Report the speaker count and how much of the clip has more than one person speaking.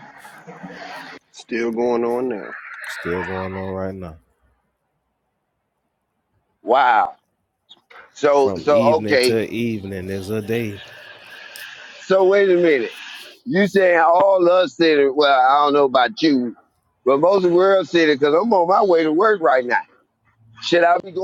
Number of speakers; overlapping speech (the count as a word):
three, about 4%